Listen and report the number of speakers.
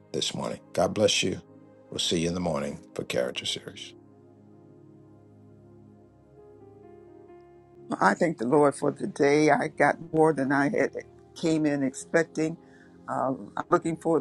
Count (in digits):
2